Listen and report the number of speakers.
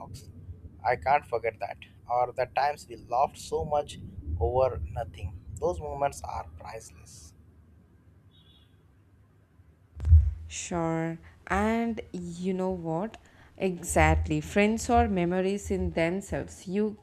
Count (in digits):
2